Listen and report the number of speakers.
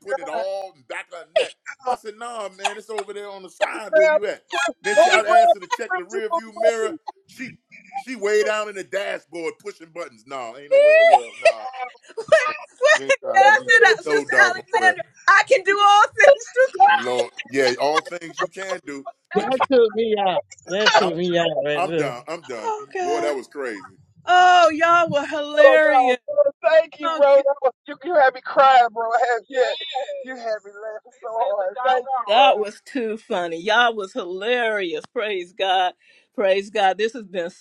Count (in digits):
4